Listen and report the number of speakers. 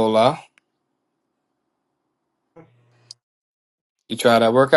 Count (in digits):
1